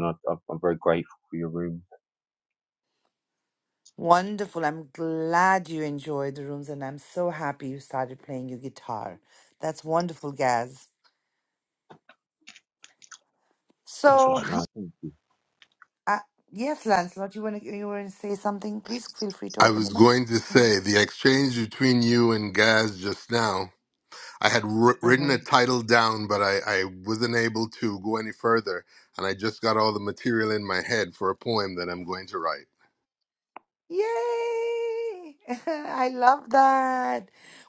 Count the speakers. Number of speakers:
three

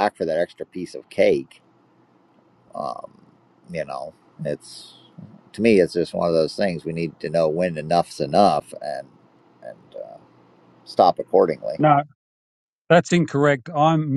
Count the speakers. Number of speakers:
two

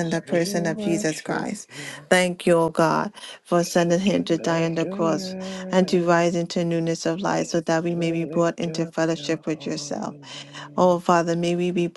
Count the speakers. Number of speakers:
two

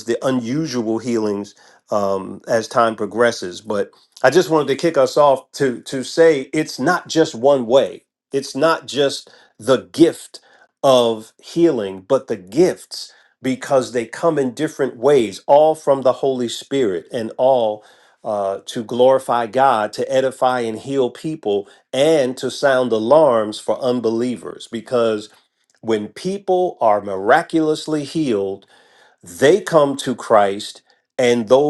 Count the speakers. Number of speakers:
one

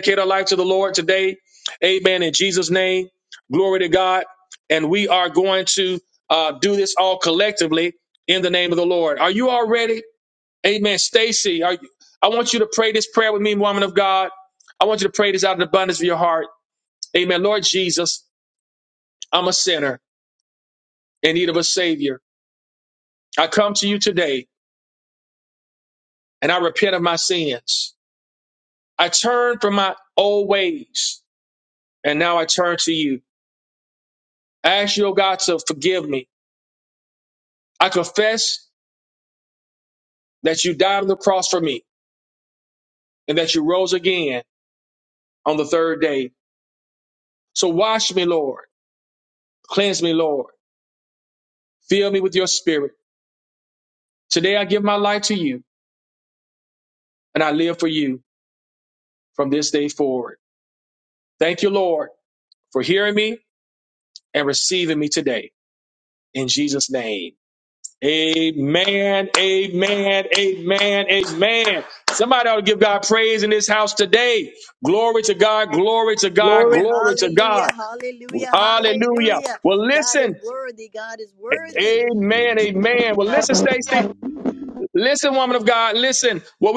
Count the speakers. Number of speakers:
two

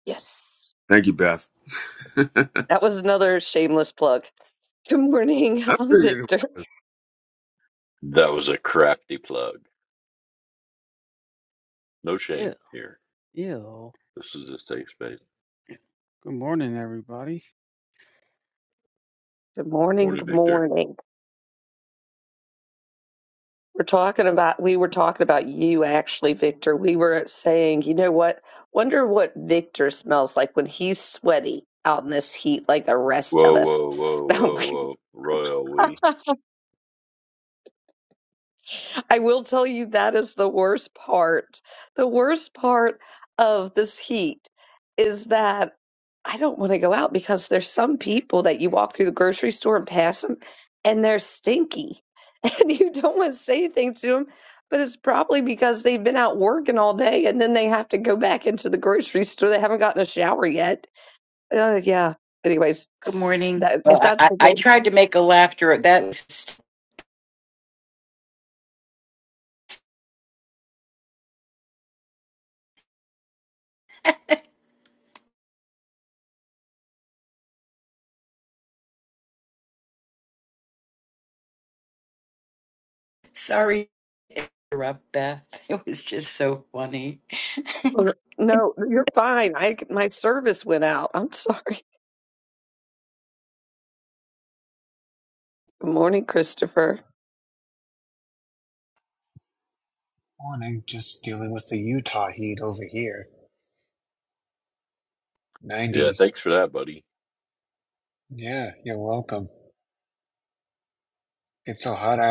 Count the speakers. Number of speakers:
six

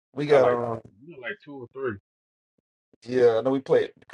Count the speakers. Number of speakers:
two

